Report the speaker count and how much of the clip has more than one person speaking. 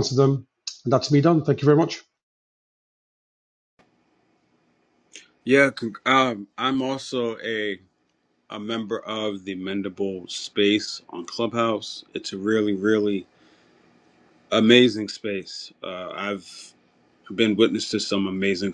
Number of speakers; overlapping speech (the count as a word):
two, no overlap